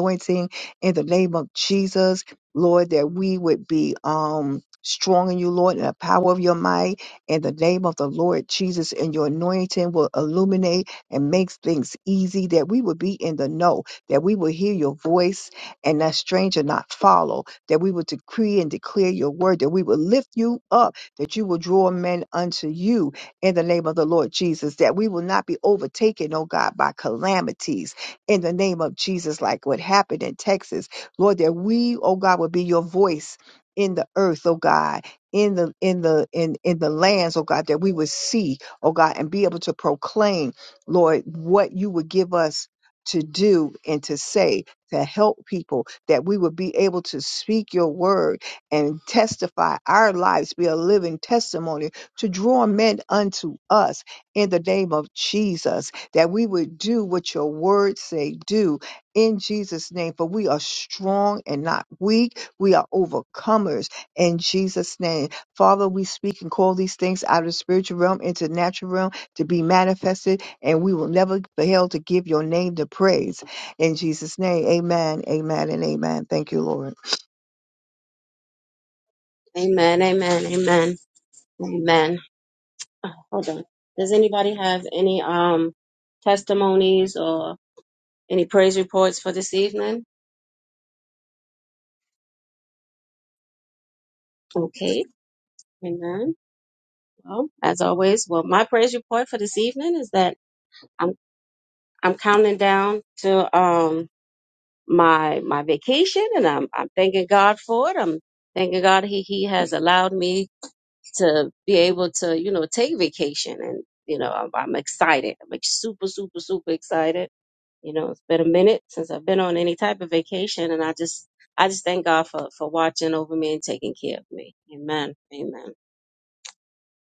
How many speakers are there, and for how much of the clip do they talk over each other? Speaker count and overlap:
2, no overlap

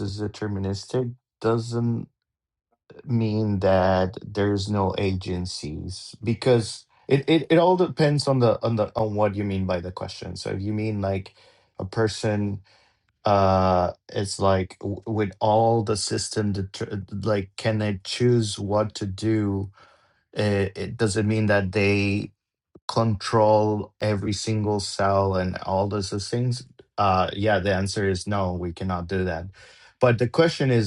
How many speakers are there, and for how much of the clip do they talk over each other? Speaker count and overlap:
1, no overlap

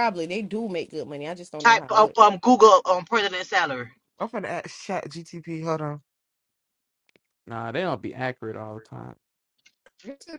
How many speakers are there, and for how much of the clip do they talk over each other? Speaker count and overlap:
4, about 5%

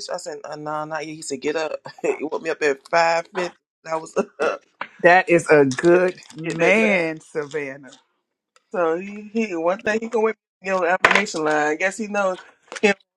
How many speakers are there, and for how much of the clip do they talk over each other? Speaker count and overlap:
2, about 4%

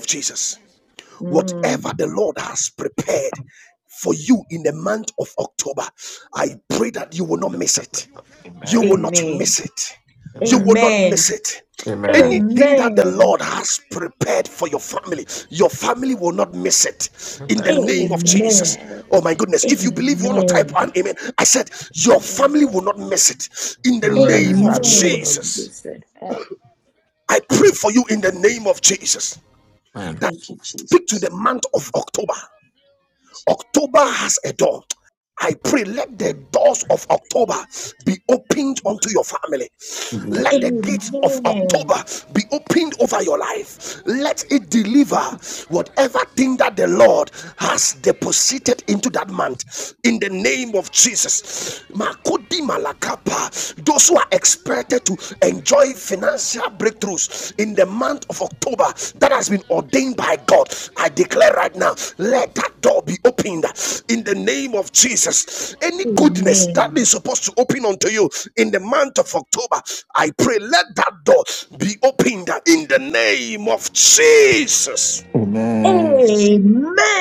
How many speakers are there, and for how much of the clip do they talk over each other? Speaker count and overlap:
4, about 15%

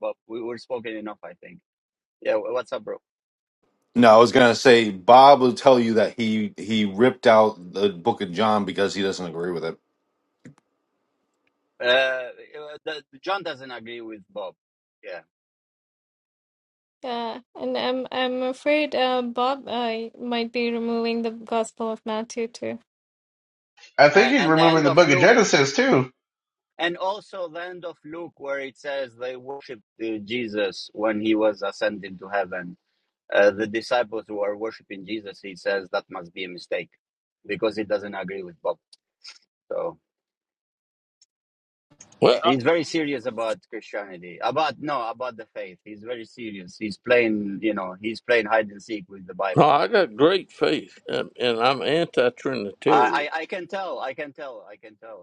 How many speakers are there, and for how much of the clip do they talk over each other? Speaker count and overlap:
5, about 3%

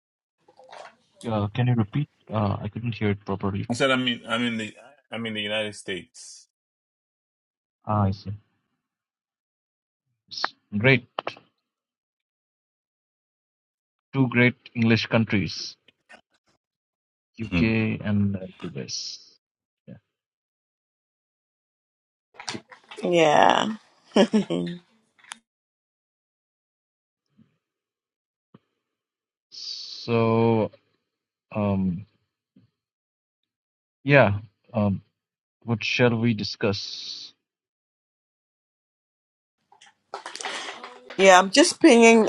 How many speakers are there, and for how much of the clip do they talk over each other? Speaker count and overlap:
3, about 1%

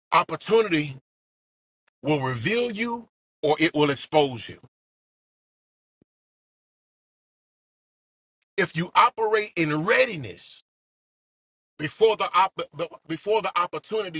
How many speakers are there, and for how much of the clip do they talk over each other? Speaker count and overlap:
1, no overlap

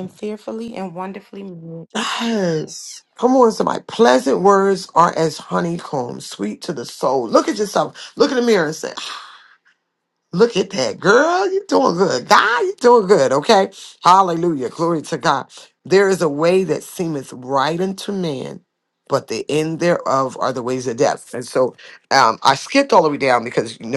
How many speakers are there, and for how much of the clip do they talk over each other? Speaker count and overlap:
2, no overlap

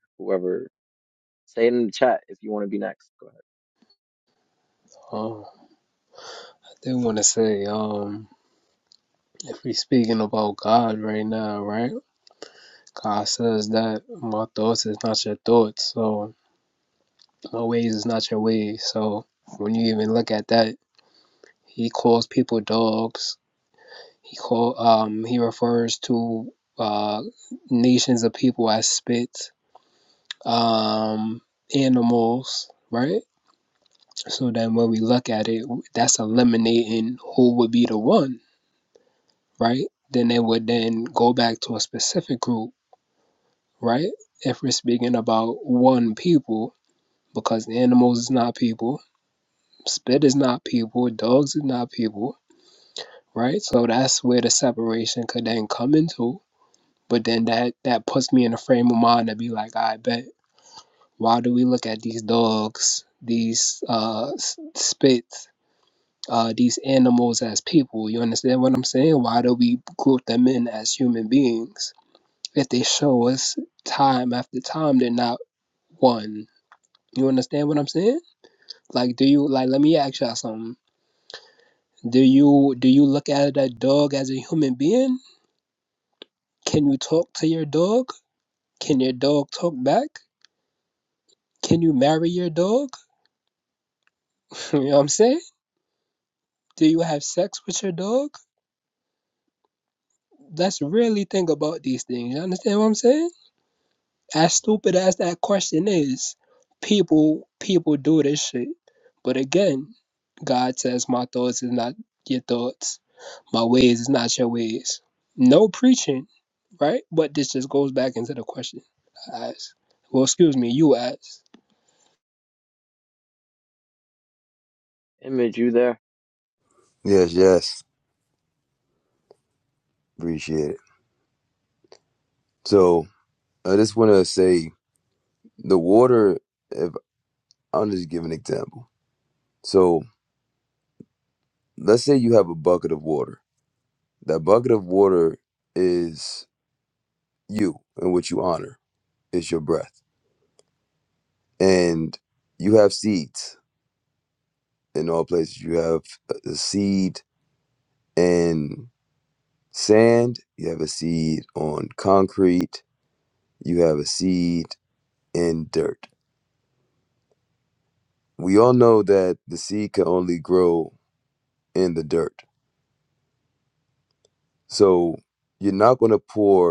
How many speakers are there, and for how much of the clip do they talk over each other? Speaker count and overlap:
3, no overlap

